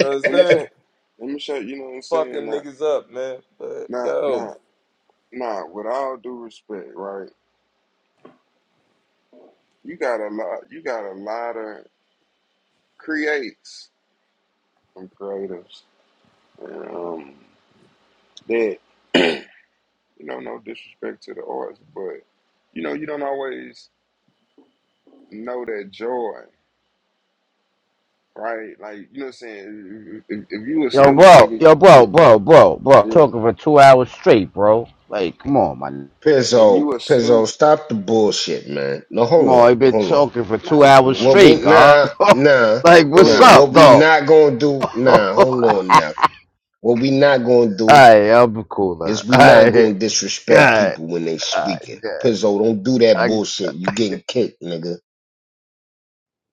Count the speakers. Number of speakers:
4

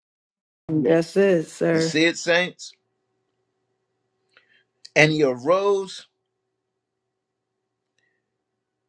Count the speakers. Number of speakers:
2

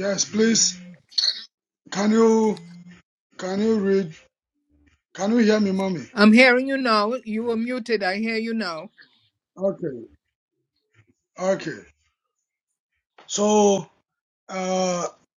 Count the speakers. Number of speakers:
2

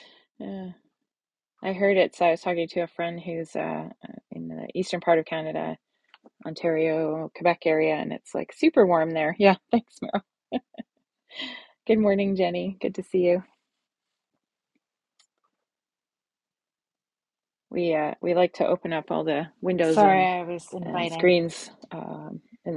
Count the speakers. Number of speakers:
2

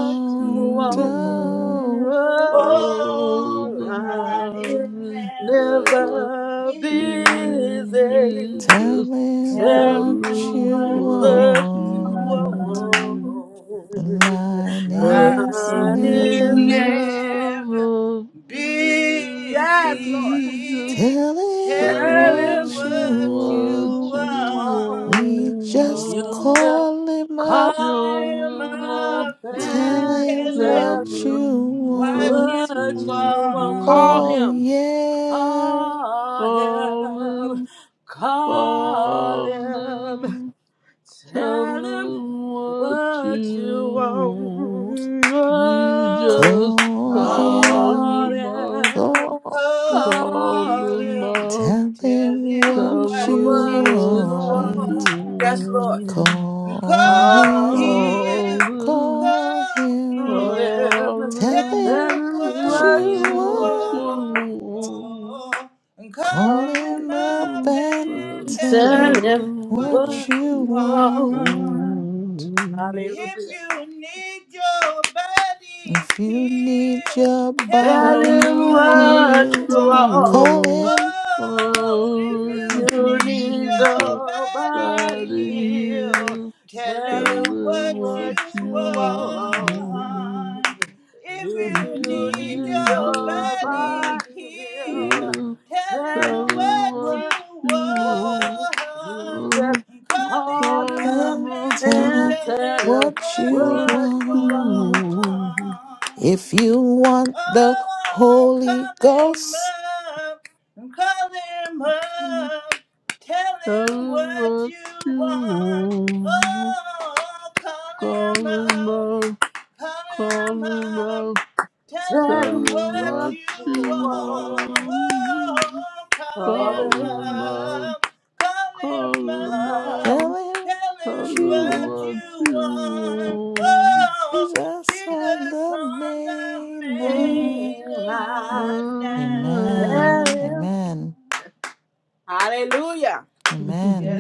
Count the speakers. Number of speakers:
4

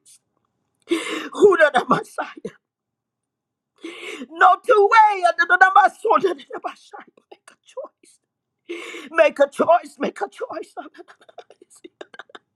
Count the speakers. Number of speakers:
1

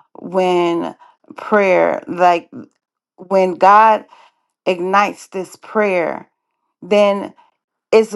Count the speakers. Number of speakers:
1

